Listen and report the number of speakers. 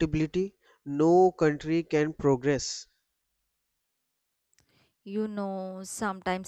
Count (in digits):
2